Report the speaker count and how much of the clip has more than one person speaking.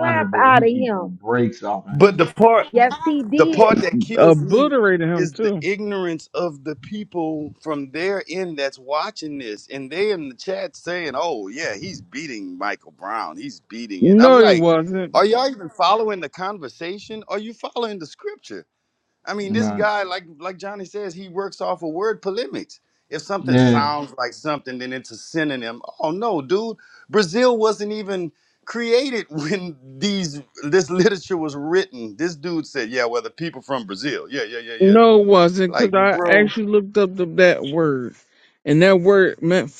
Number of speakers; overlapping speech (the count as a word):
four, about 14%